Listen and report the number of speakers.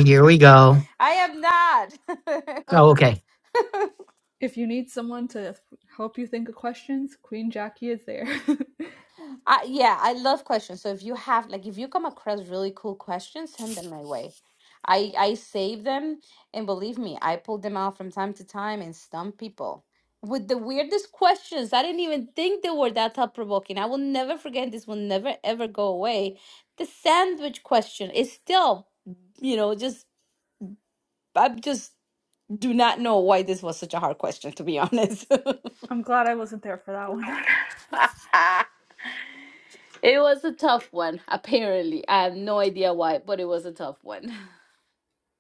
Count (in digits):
3